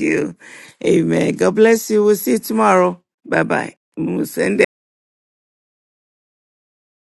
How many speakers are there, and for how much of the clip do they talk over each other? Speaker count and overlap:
one, no overlap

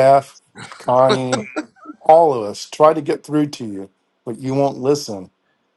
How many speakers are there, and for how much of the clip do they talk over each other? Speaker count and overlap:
one, no overlap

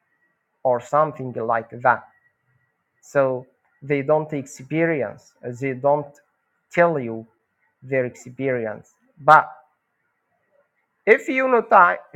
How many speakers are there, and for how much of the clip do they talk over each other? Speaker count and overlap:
one, no overlap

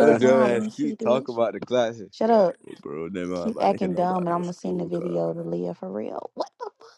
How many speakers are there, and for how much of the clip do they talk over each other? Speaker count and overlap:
three, about 46%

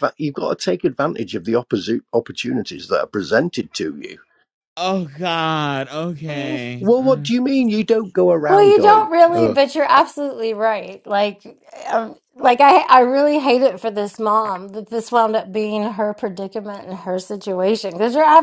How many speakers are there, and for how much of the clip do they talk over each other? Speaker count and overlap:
three, about 9%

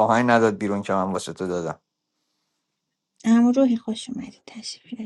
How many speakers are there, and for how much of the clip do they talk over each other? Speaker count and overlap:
two, no overlap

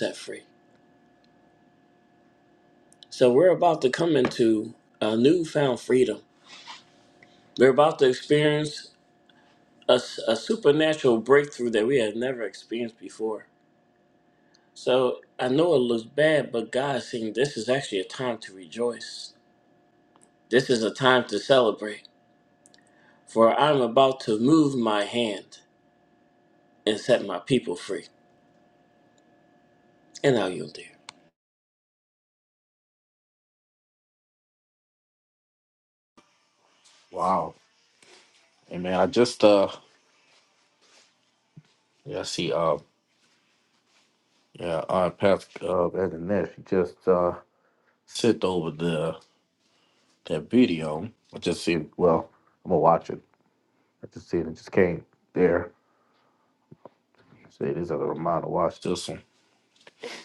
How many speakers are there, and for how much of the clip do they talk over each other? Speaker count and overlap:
two, no overlap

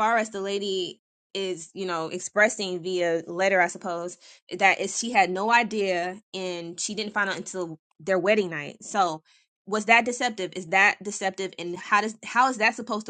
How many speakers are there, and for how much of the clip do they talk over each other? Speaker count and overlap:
one, no overlap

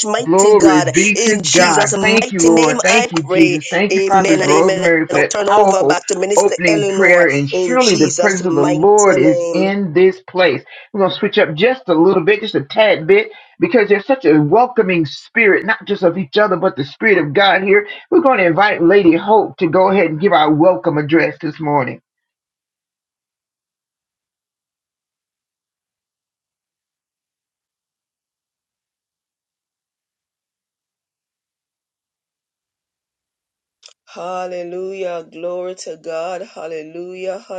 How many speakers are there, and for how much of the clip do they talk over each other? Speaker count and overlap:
three, about 24%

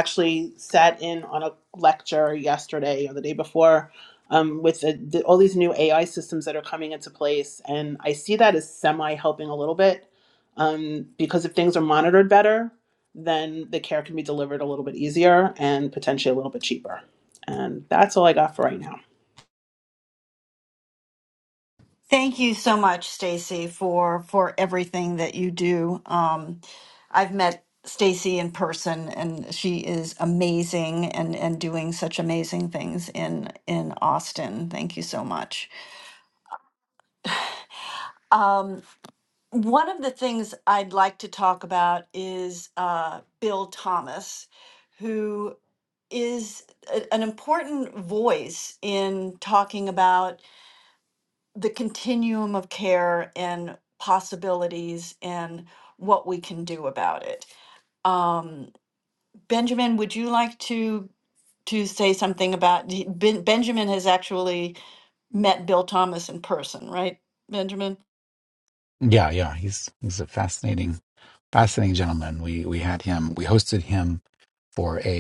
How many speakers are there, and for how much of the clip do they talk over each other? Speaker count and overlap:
three, no overlap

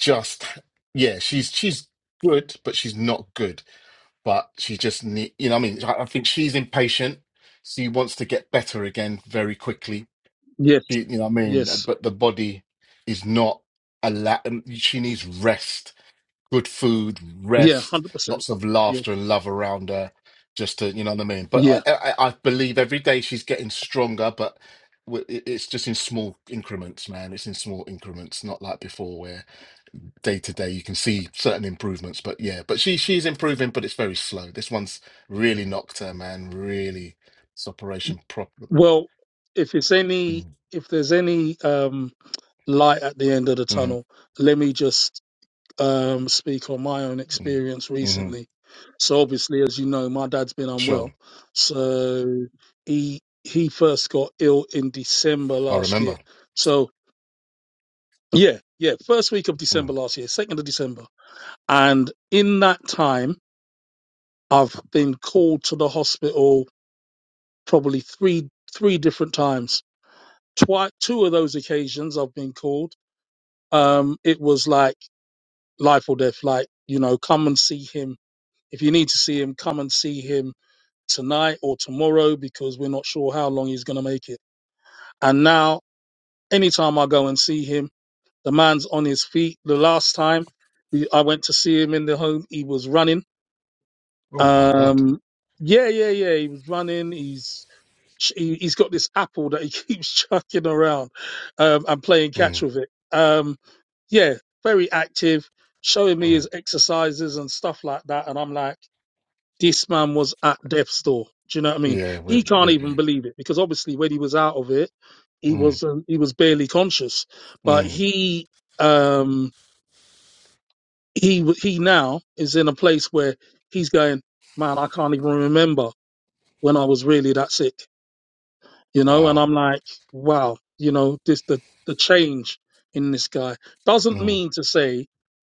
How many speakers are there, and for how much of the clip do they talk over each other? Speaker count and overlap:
two, about 4%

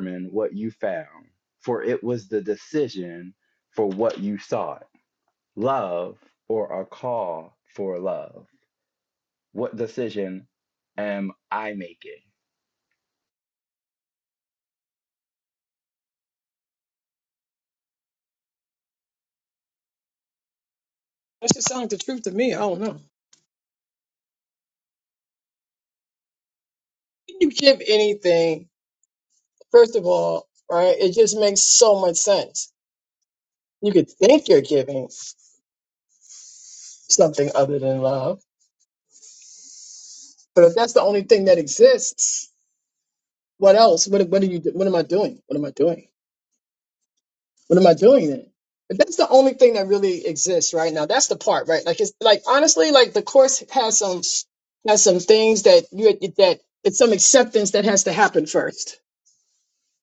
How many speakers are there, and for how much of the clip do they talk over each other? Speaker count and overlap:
two, no overlap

